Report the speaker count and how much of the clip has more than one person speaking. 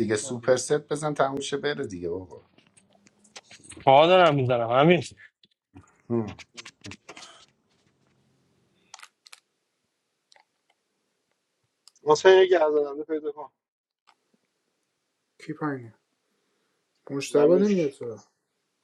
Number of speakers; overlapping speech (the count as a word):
four, about 3%